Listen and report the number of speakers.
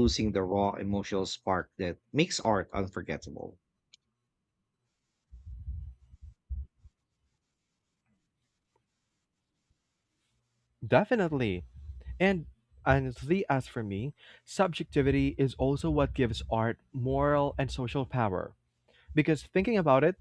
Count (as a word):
two